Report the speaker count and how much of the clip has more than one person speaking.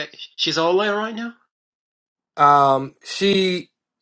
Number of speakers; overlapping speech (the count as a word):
two, no overlap